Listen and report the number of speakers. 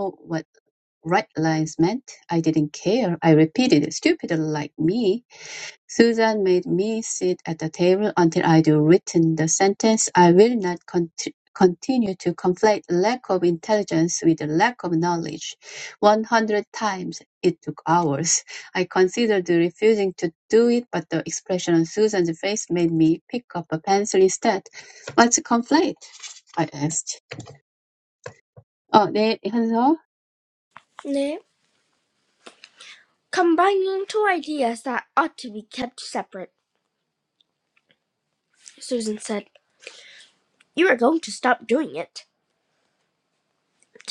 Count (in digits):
2